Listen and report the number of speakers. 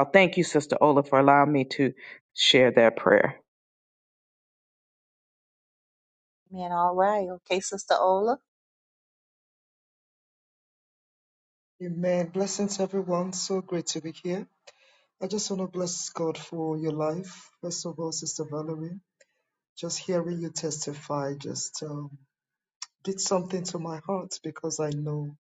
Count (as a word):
three